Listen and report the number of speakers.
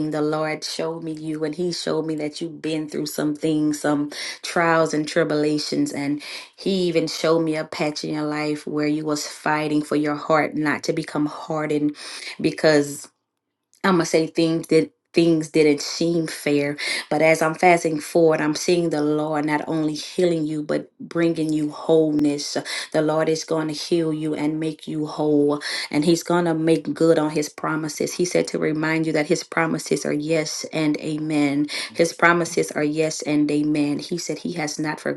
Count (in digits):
1